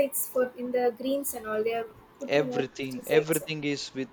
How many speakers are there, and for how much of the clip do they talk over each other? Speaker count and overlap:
2, about 28%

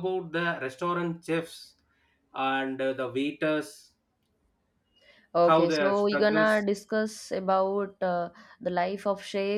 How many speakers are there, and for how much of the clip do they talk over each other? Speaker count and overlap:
2, about 11%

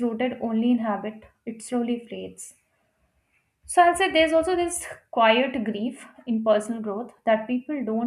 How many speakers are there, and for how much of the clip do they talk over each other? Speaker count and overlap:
1, no overlap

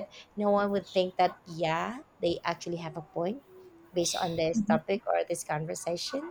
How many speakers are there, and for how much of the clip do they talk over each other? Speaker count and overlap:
1, no overlap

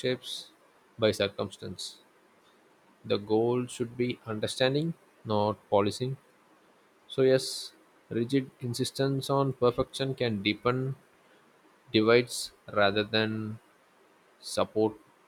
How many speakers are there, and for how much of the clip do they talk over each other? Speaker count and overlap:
1, no overlap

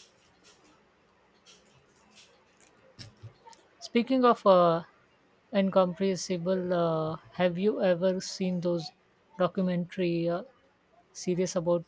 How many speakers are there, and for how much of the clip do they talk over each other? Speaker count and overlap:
1, no overlap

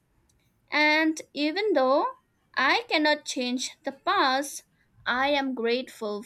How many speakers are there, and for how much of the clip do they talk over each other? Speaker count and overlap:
1, no overlap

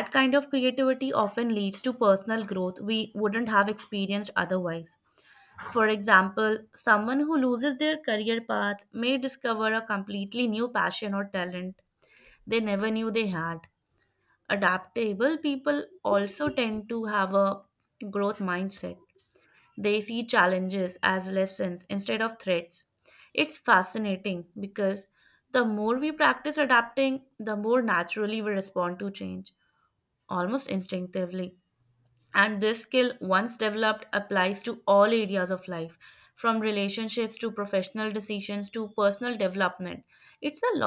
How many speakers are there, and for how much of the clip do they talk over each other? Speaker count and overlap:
1, no overlap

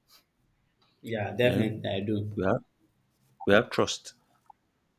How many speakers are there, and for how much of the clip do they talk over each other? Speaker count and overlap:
2, about 5%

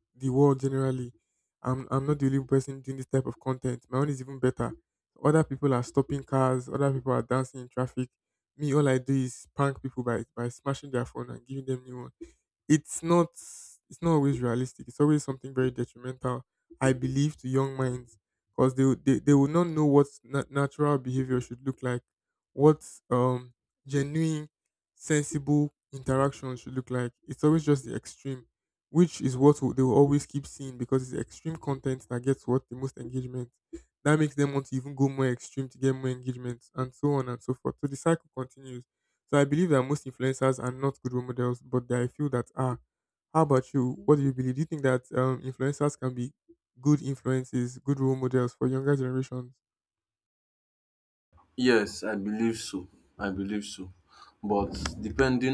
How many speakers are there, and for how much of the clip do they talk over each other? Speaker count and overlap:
2, no overlap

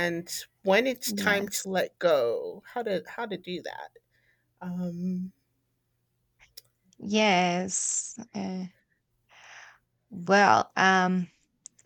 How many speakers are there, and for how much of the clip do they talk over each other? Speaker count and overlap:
2, about 3%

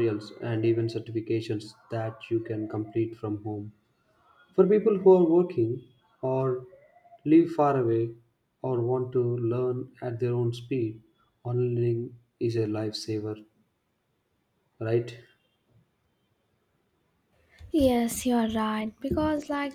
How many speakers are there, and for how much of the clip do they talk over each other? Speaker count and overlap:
2, no overlap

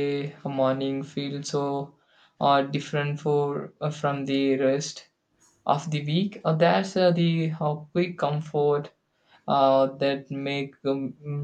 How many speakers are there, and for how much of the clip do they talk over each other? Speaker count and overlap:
1, no overlap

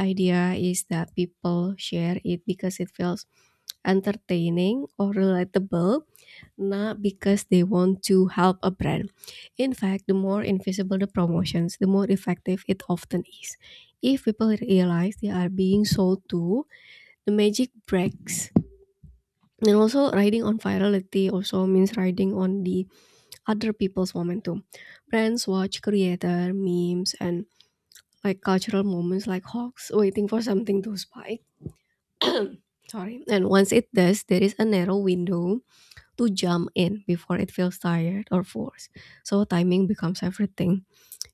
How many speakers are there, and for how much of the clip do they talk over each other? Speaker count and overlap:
1, no overlap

